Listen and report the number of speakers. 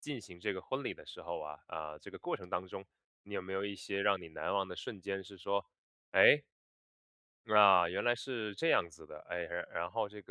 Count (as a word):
one